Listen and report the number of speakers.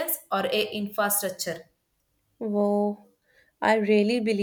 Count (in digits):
2